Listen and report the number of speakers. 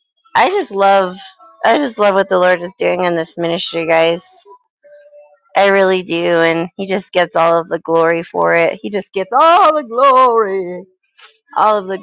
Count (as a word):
one